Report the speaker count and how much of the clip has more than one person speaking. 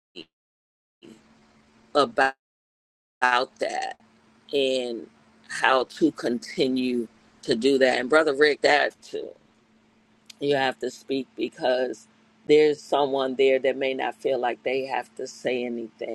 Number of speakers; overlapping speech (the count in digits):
1, no overlap